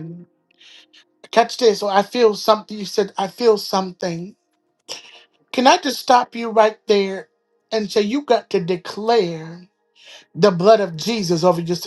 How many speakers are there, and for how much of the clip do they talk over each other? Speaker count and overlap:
1, no overlap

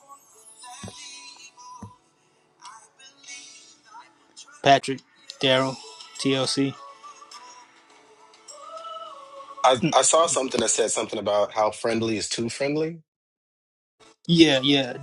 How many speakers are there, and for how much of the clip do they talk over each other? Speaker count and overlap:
2, no overlap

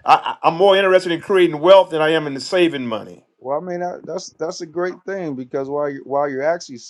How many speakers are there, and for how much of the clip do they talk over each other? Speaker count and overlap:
2, no overlap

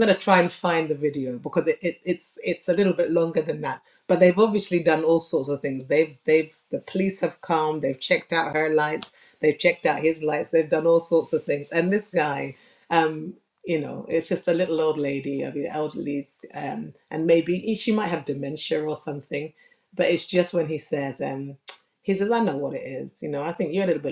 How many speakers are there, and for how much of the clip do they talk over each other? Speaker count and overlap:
1, no overlap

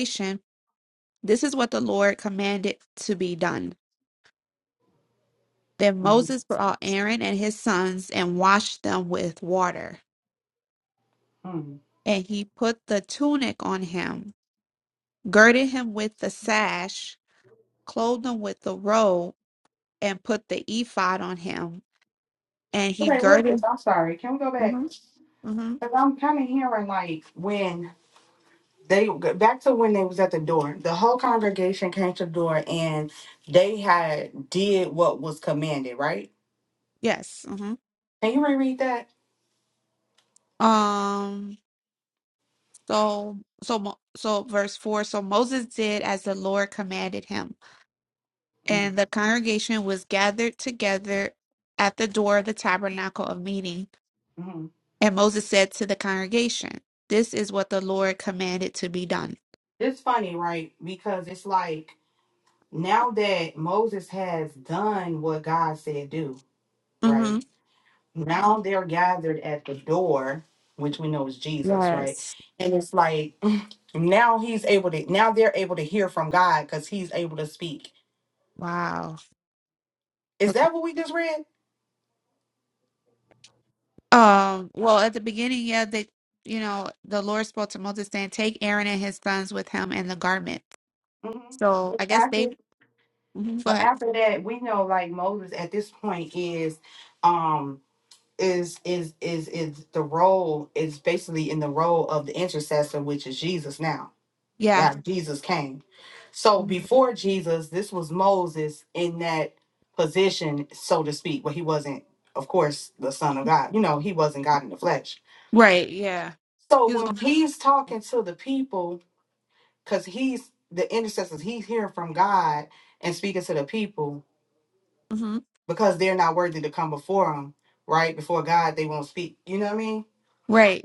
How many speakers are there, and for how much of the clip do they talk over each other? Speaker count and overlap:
2, about 3%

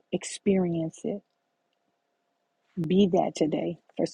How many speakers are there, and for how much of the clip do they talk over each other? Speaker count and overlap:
1, no overlap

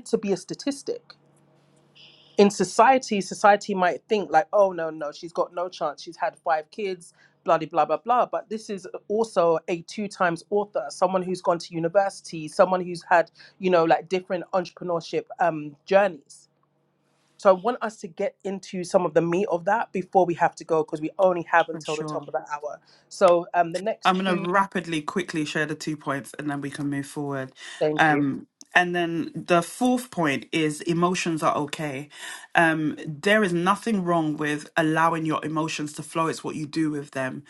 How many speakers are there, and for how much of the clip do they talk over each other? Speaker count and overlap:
2, about 3%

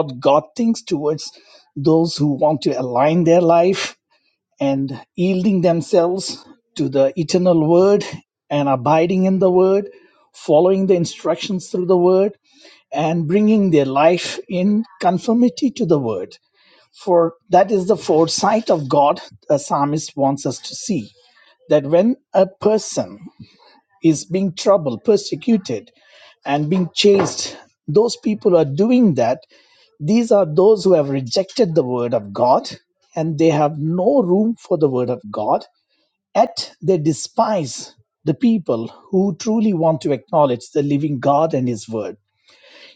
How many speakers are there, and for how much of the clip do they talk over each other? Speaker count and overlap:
1, no overlap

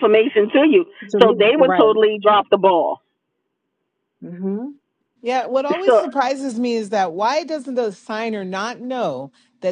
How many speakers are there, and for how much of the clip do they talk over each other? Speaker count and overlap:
3, about 9%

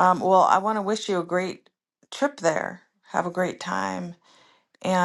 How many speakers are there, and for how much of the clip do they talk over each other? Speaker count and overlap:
1, no overlap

